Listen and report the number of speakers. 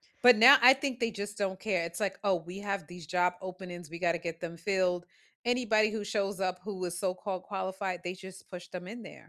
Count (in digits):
1